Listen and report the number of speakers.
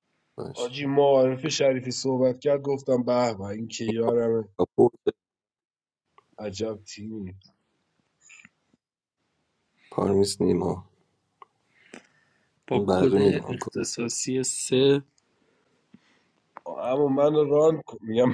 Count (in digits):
3